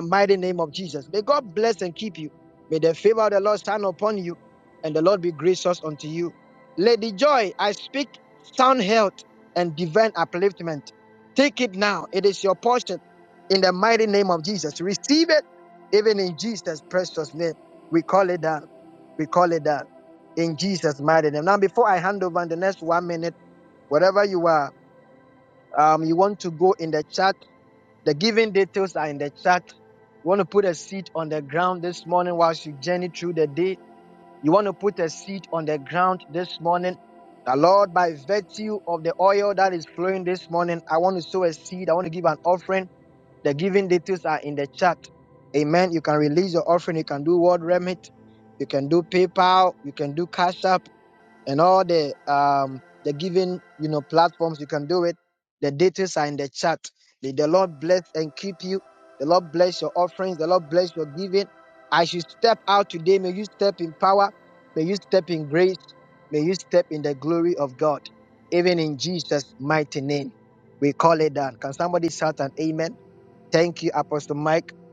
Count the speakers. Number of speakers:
one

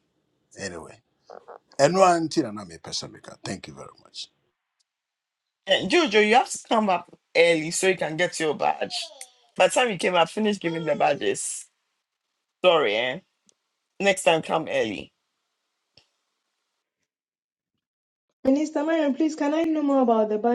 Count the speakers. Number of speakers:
three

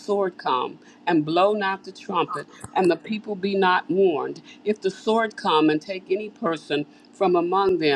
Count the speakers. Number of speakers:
one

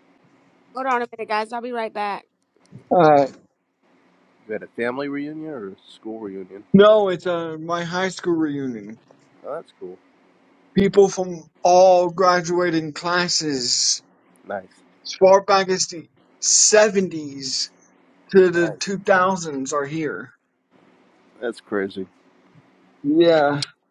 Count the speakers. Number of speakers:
three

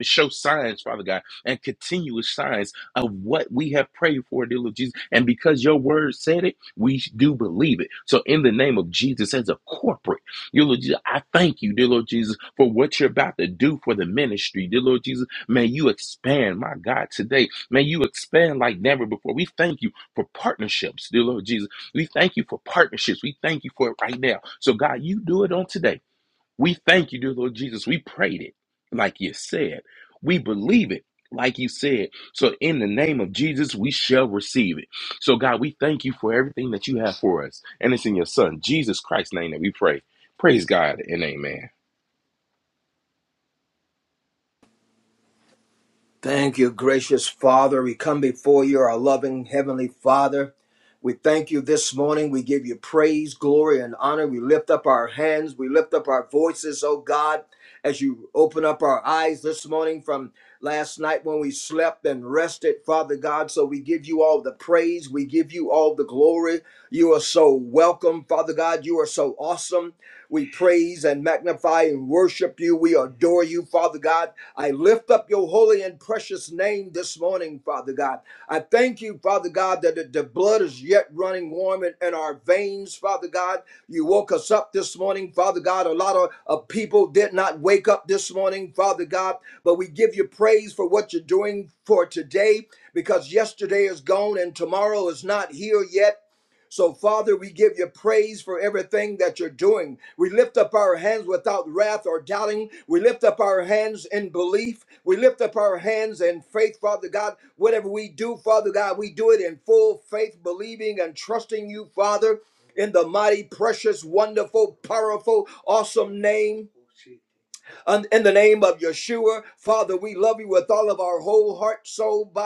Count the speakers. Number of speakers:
two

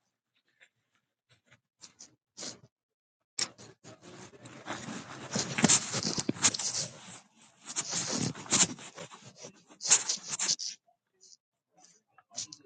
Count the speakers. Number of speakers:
zero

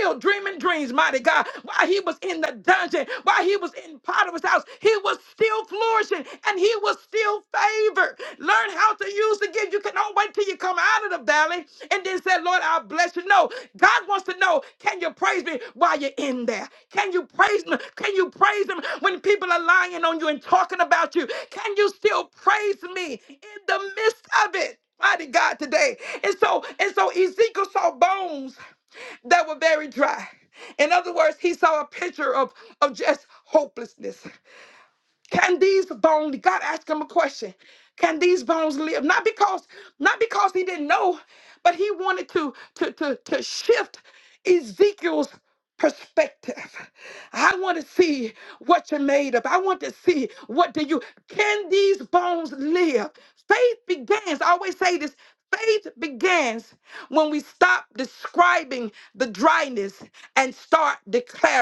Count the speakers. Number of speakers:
one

